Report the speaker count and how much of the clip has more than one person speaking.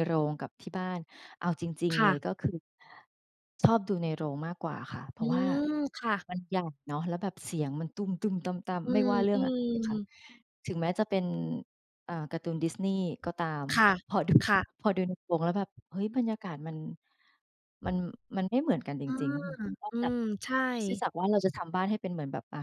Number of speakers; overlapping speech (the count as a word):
two, about 6%